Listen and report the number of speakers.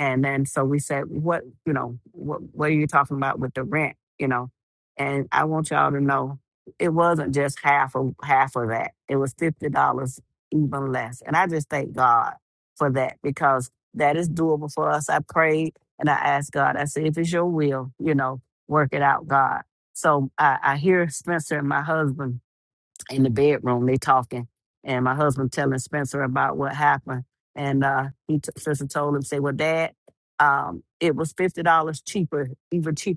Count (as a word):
one